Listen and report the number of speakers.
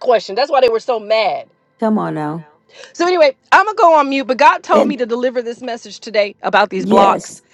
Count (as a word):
two